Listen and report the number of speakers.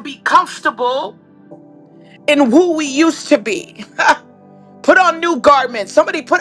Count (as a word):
one